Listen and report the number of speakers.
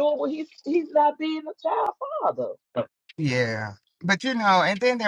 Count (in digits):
2